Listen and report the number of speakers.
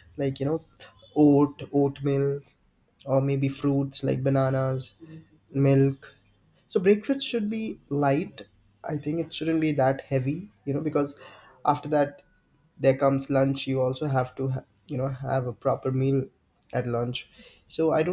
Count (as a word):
one